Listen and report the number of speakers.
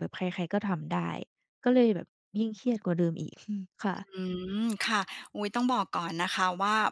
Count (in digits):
2